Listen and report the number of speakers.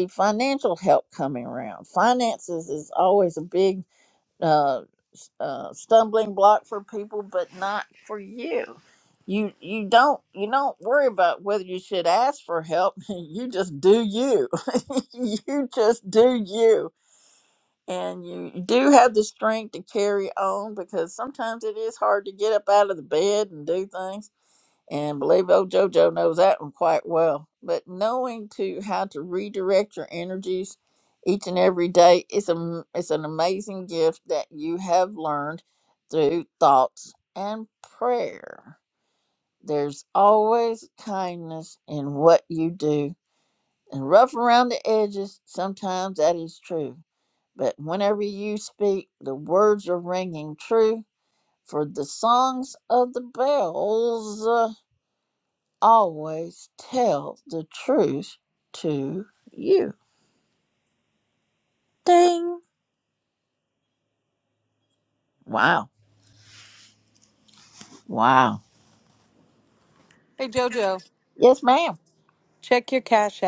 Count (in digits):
2